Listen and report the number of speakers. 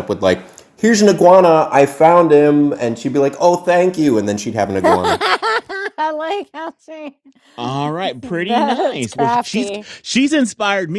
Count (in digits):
3